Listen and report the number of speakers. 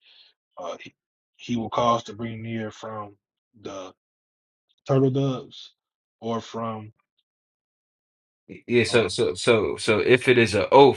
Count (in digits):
2